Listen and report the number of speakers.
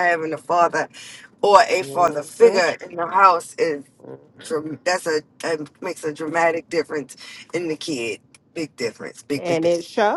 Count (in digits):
2